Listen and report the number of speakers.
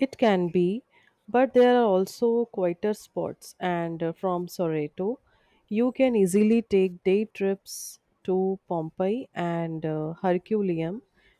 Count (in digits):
1